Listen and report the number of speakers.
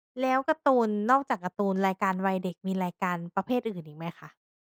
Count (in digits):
1